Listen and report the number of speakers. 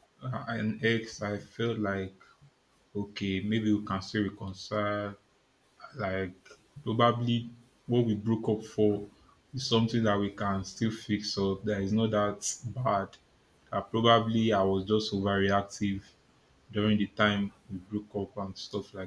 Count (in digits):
1